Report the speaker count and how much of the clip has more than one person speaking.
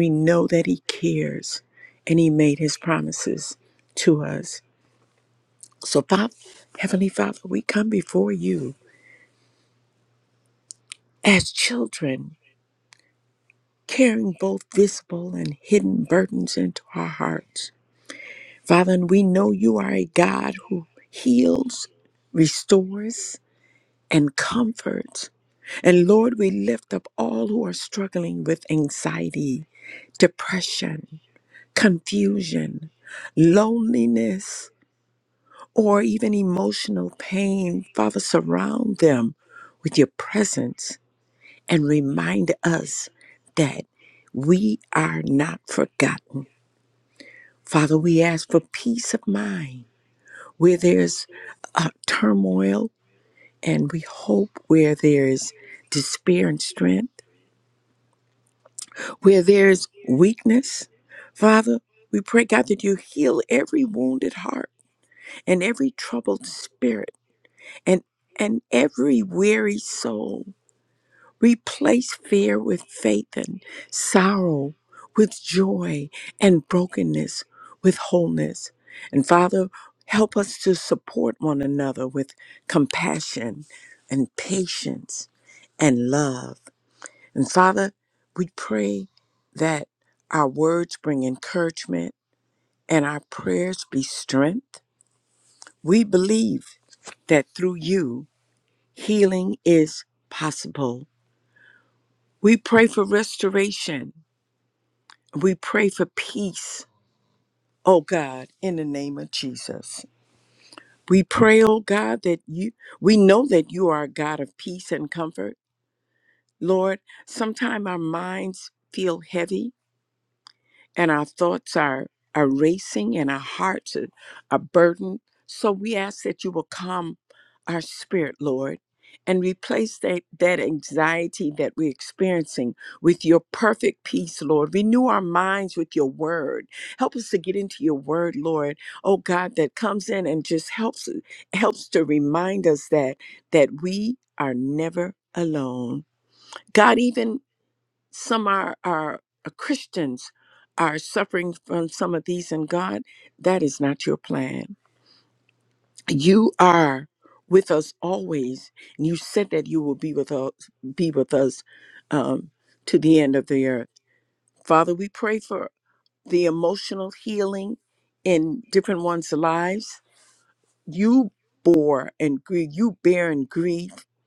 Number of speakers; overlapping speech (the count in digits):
1, no overlap